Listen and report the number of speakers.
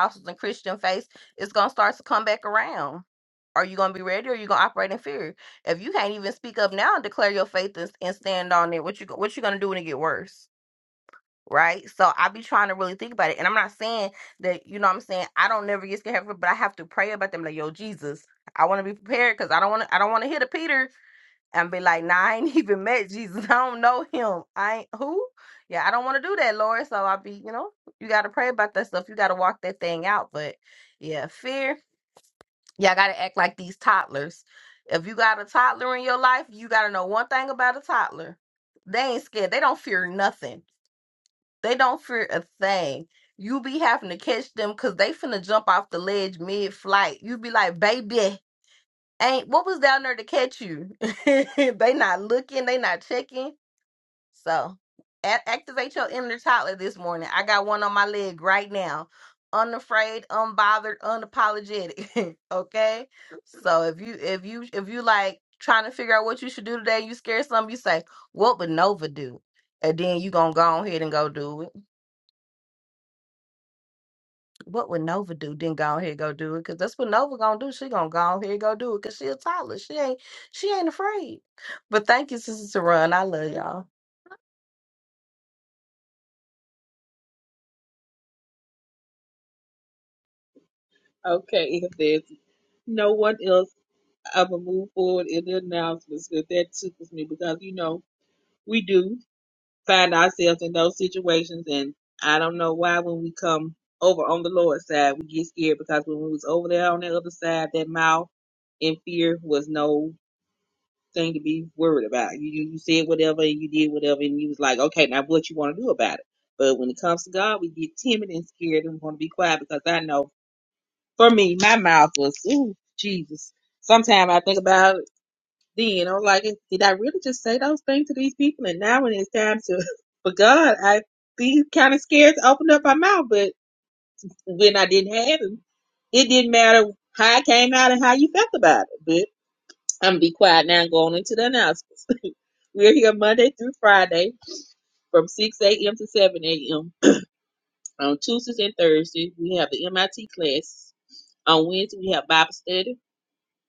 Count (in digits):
2